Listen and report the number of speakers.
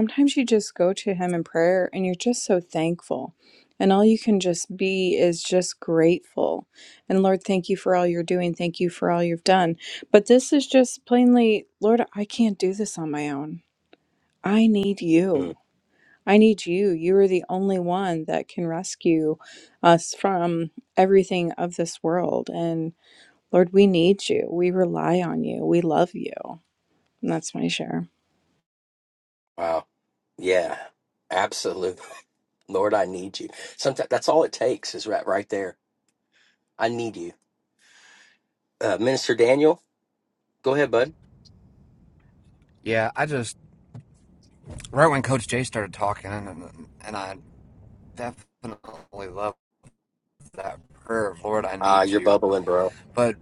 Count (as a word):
three